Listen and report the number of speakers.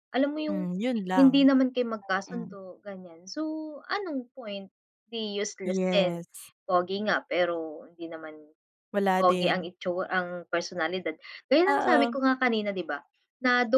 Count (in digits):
2